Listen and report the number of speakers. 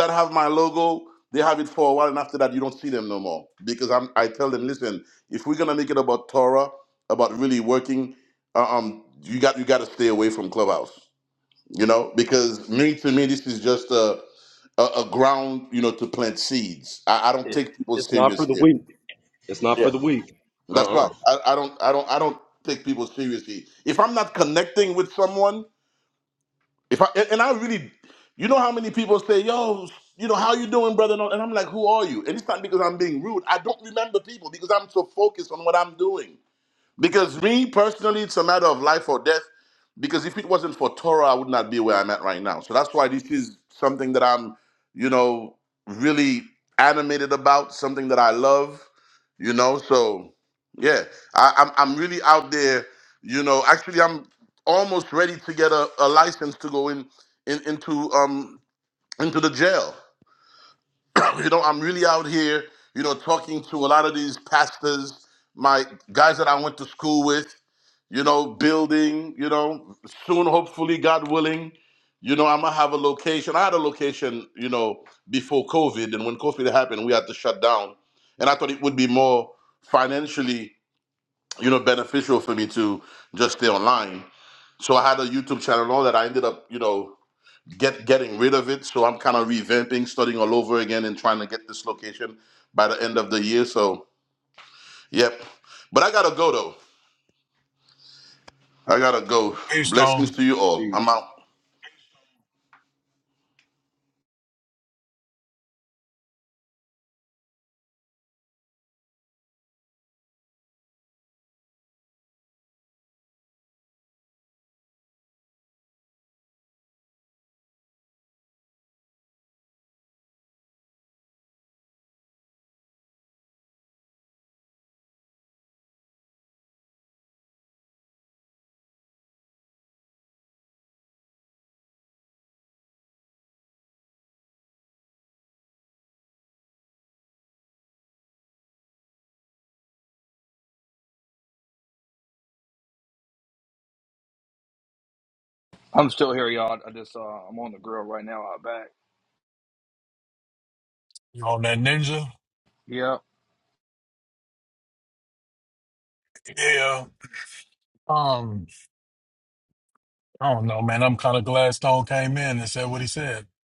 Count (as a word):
four